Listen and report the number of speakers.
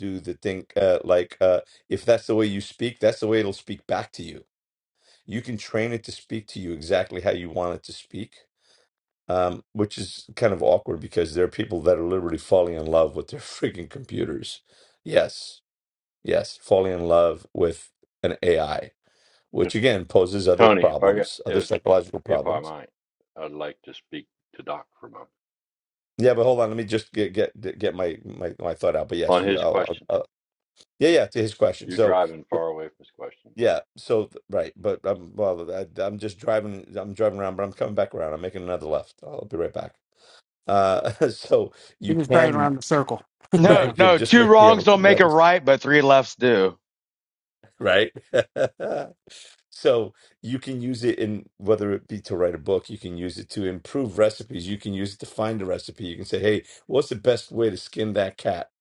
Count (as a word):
four